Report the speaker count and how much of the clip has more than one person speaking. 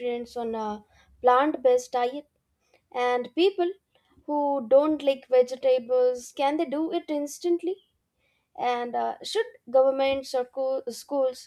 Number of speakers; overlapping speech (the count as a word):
one, no overlap